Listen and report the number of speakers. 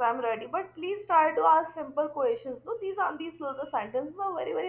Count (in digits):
1